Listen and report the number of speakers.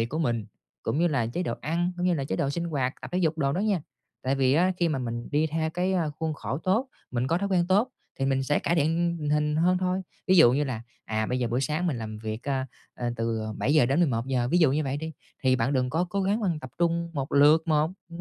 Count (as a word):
one